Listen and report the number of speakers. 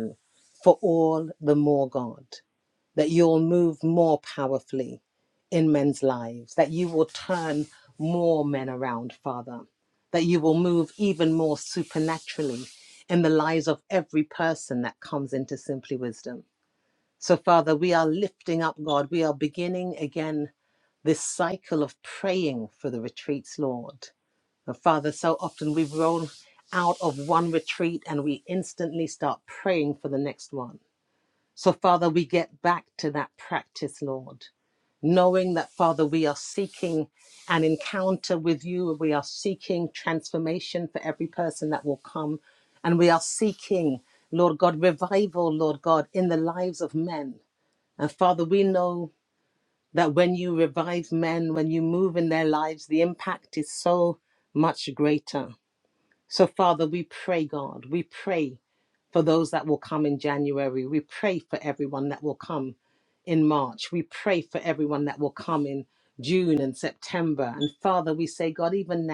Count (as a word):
one